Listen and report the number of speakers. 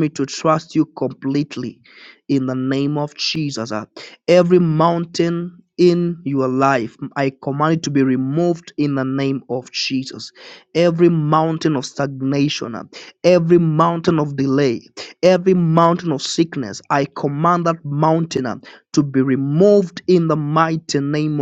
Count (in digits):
1